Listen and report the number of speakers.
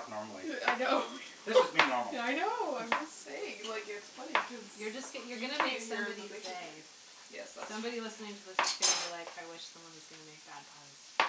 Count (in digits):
3